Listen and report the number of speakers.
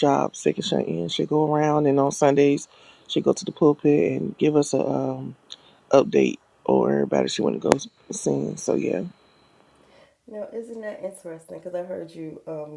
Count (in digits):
2